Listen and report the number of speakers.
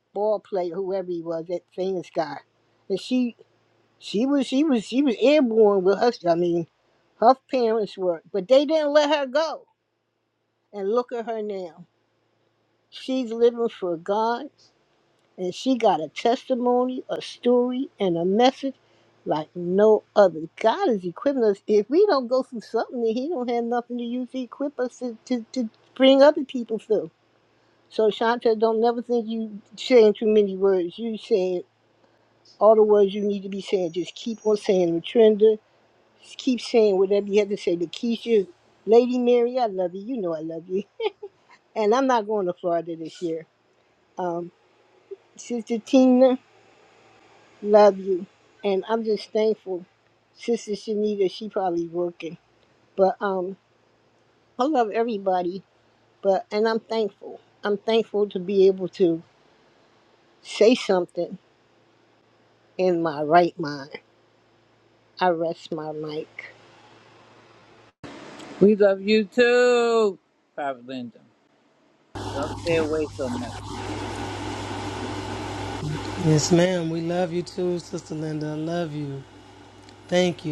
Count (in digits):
3